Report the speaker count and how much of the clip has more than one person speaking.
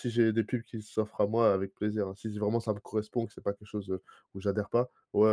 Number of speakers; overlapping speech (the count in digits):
1, no overlap